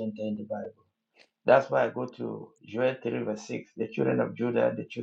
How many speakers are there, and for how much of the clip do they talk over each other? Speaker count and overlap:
1, no overlap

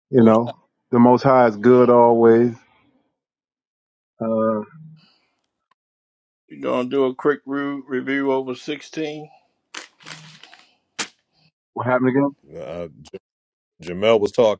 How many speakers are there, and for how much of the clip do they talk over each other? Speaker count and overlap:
3, about 2%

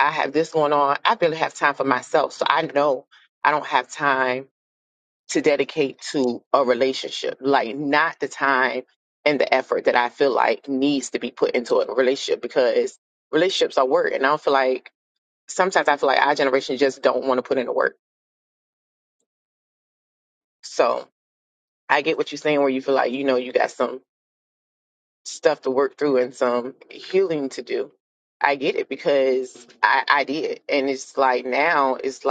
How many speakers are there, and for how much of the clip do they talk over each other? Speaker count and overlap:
1, no overlap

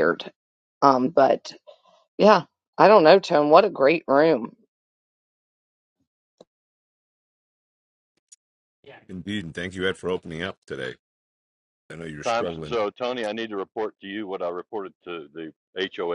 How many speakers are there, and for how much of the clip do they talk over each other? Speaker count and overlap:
3, about 3%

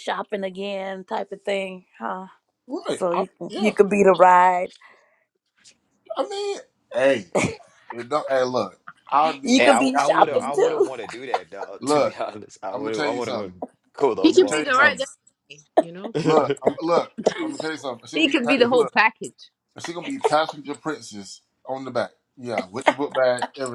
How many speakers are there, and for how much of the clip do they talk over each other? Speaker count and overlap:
4, about 22%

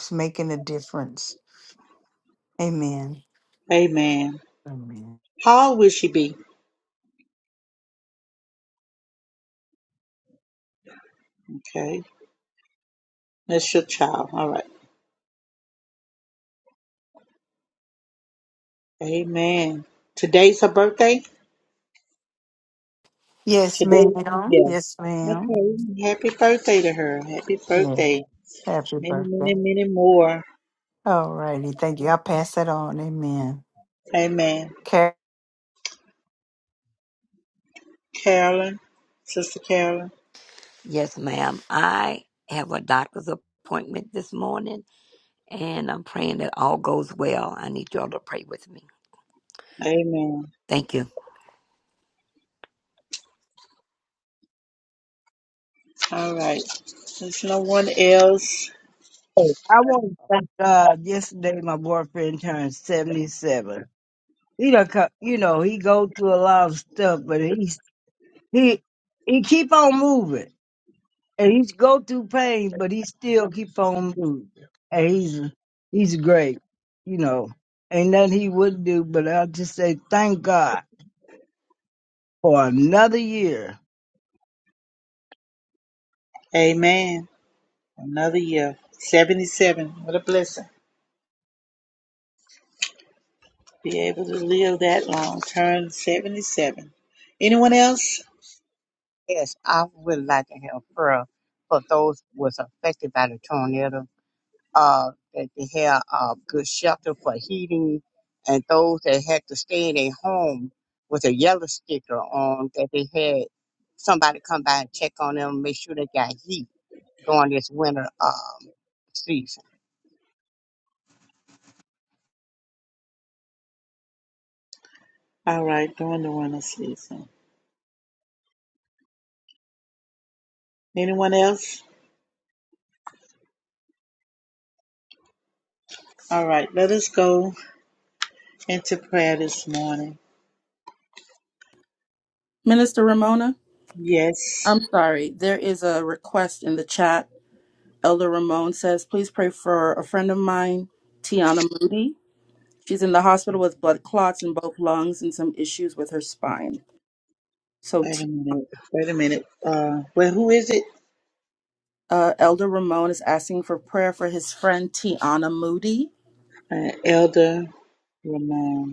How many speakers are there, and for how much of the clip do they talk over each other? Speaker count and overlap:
6, about 1%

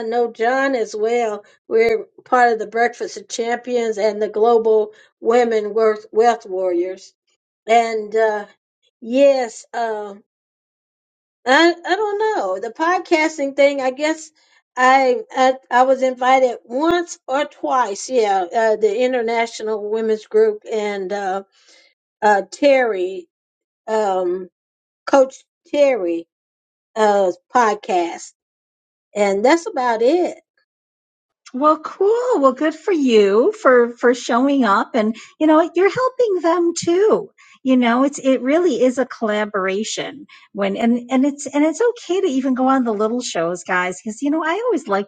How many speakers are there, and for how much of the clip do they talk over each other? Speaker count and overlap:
2, no overlap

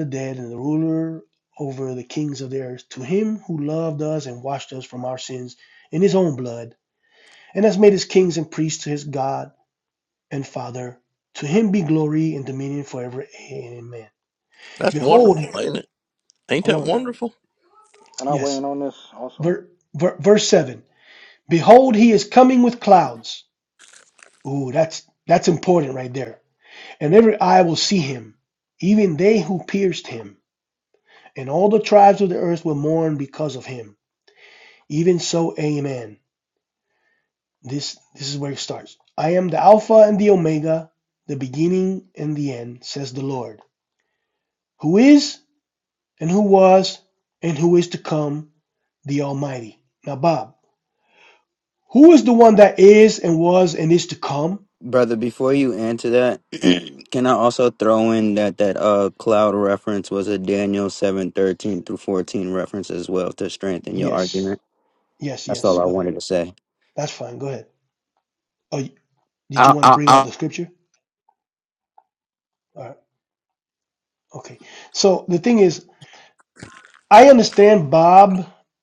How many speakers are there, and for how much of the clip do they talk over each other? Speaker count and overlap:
4, about 4%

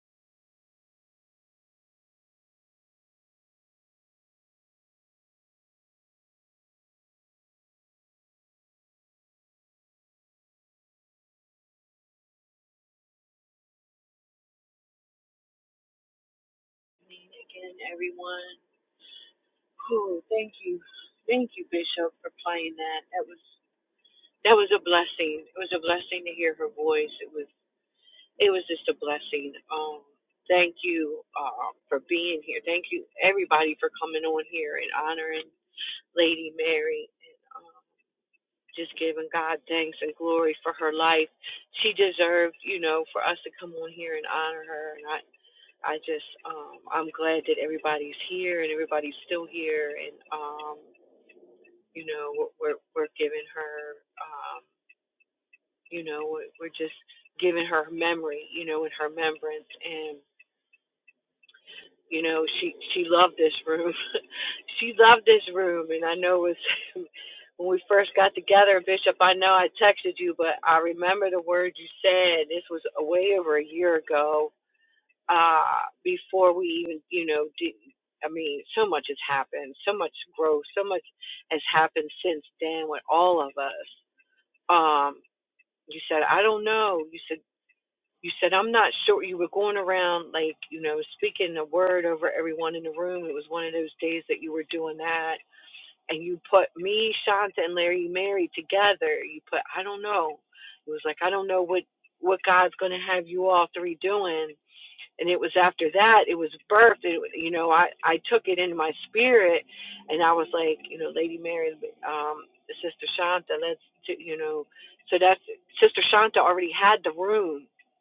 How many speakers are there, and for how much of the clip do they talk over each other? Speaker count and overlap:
1, no overlap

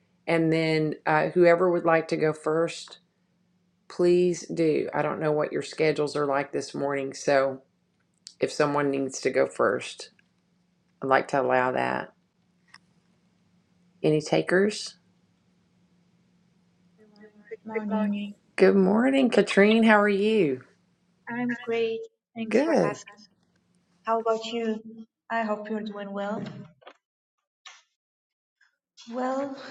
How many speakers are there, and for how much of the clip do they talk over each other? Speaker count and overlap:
2, about 2%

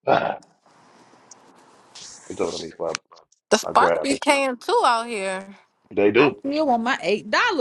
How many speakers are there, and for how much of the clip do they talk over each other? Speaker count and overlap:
3, about 12%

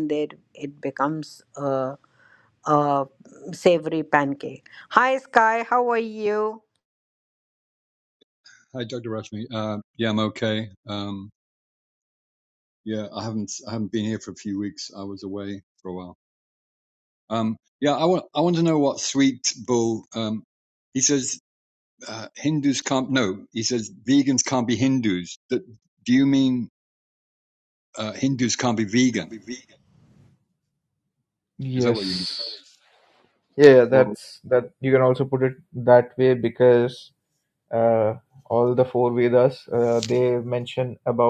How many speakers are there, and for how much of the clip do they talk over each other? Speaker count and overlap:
3, about 2%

